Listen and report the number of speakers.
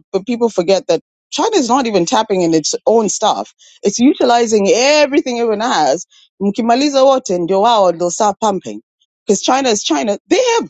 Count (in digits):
1